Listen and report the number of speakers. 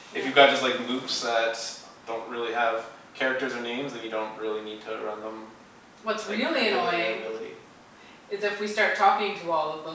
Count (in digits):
2